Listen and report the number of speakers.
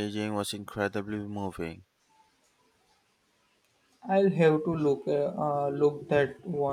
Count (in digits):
2